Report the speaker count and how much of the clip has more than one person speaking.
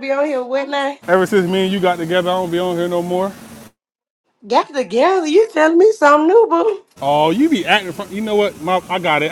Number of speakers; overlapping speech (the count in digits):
2, no overlap